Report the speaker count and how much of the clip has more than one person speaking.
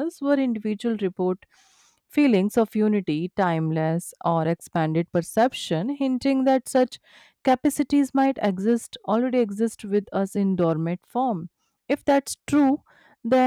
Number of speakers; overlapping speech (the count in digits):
1, no overlap